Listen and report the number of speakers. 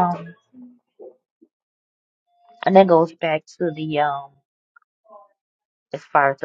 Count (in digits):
1